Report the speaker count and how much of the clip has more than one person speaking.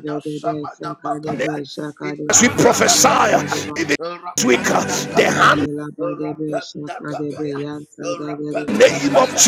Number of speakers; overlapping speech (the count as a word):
three, about 60%